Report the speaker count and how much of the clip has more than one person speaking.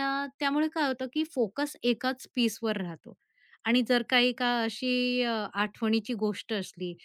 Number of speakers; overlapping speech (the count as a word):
one, no overlap